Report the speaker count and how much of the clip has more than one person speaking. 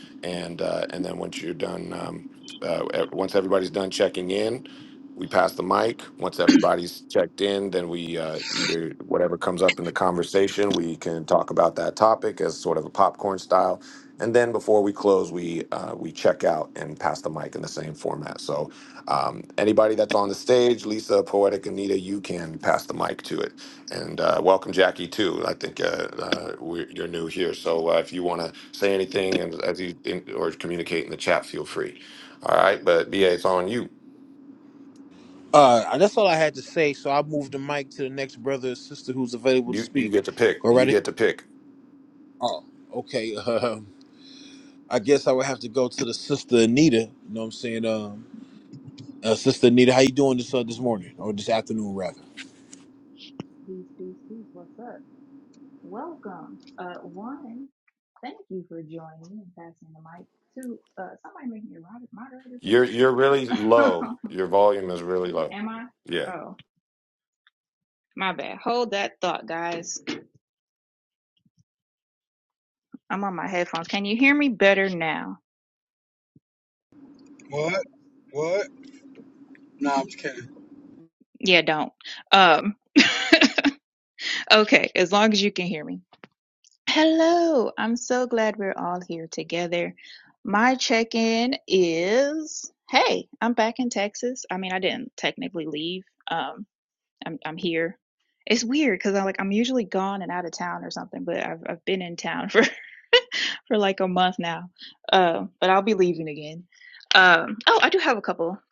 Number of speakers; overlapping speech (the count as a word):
four, about 1%